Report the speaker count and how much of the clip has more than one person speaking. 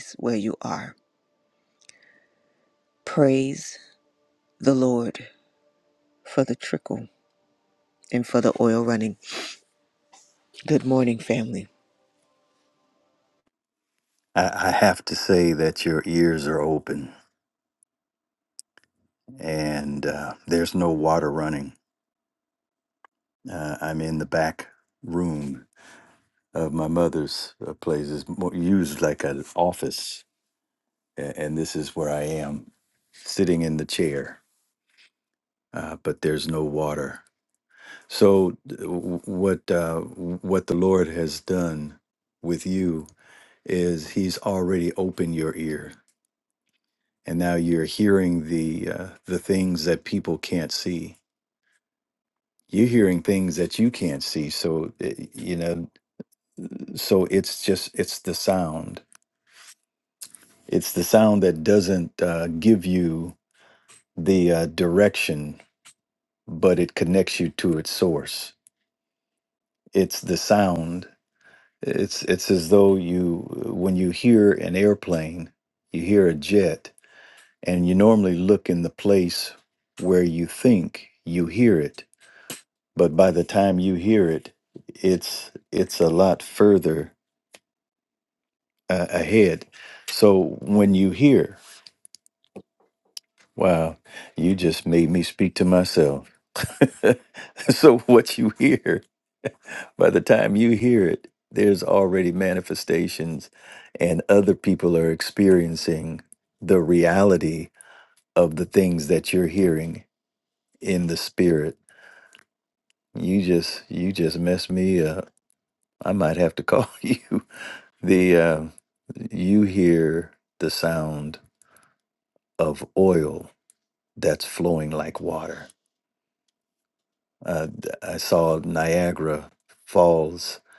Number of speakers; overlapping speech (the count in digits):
2, no overlap